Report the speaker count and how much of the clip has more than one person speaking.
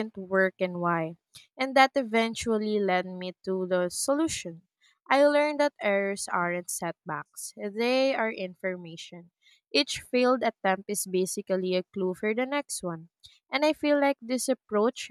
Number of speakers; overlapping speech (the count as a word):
one, no overlap